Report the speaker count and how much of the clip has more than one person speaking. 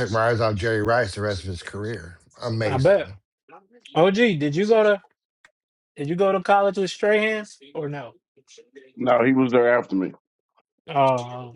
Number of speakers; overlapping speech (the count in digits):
3, about 3%